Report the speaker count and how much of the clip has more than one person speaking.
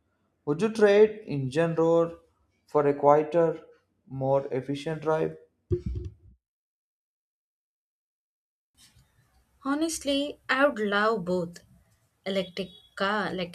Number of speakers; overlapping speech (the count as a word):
two, no overlap